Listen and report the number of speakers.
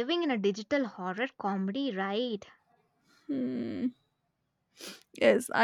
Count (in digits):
2